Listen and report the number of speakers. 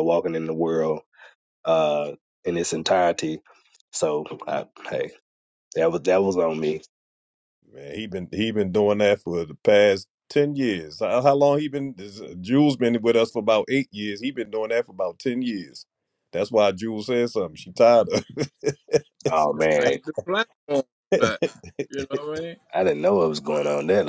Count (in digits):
3